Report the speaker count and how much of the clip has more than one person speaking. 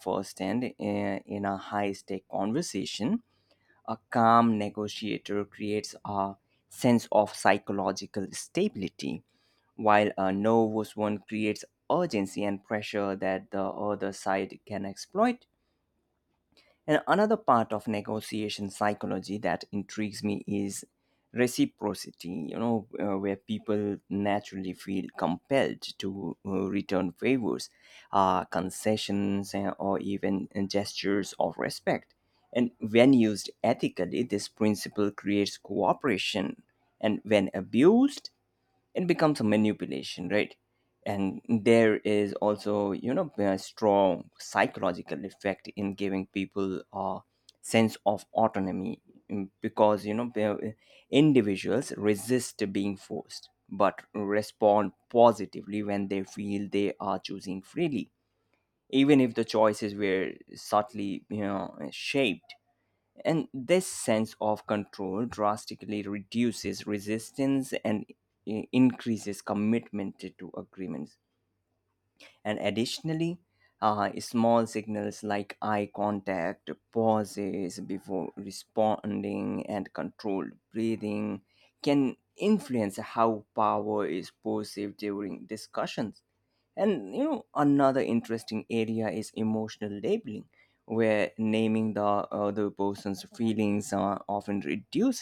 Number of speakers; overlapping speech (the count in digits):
1, no overlap